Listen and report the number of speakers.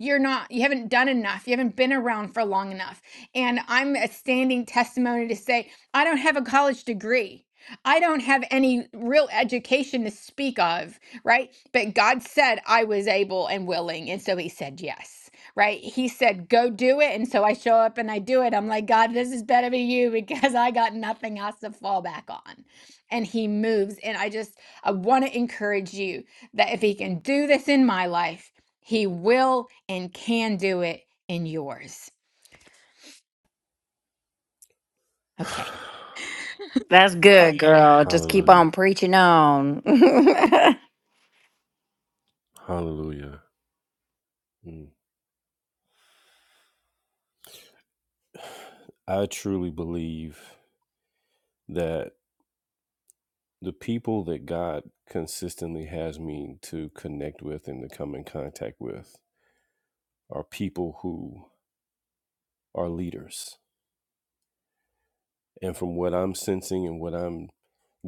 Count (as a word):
three